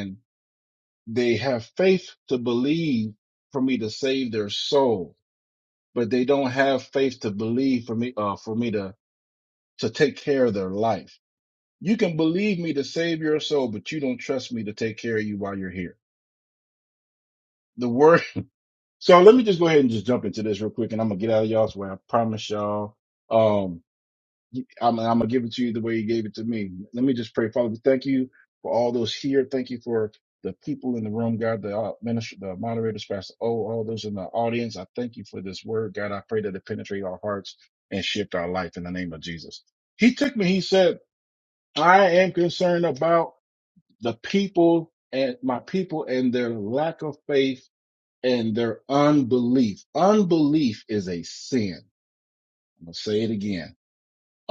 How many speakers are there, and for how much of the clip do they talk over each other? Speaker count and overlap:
1, no overlap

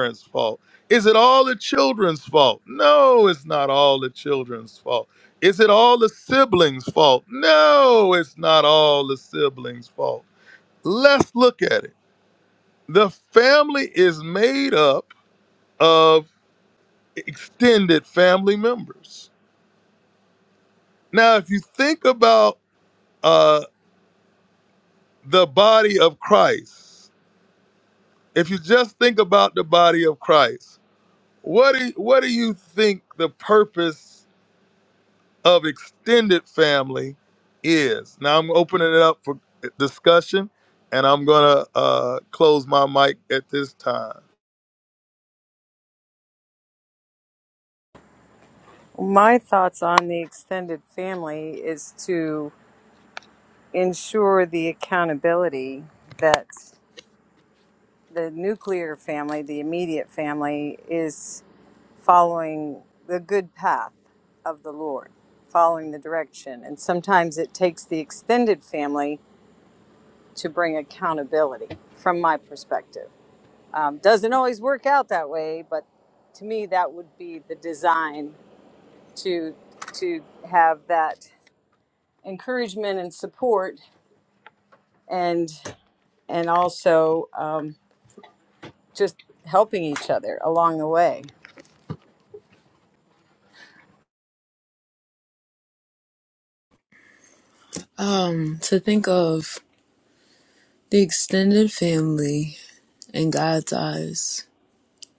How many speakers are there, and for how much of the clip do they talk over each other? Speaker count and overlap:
3, no overlap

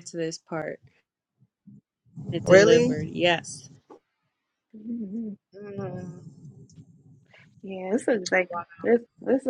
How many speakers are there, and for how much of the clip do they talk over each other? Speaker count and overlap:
3, about 7%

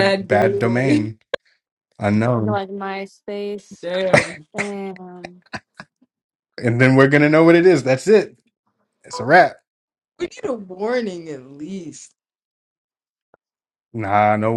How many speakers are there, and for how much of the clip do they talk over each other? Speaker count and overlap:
3, about 9%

